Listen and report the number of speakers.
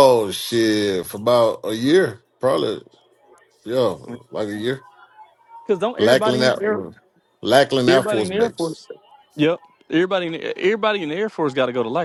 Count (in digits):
2